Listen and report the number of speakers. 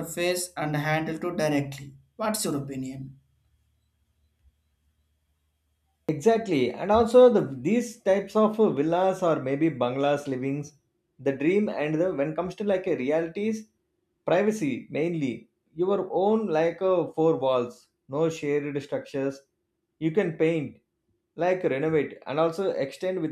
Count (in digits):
2